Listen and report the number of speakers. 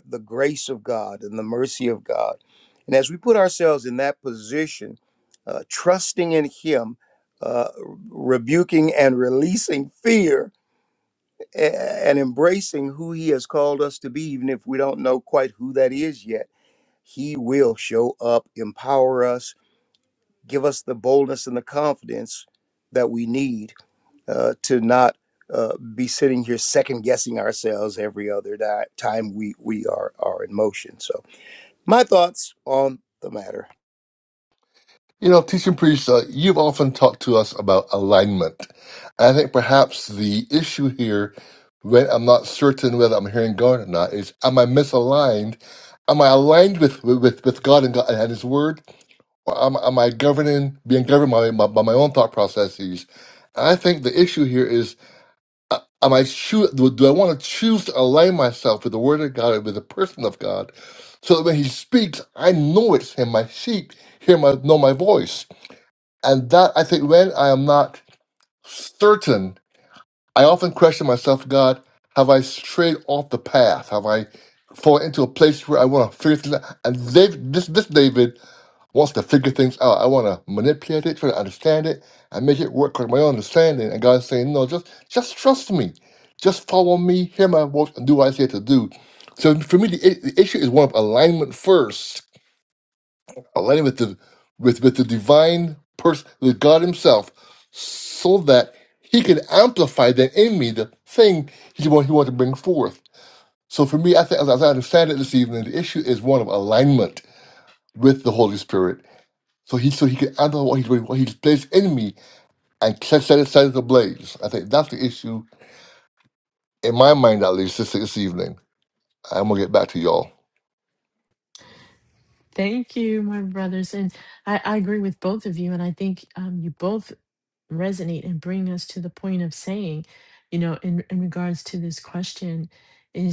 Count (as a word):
three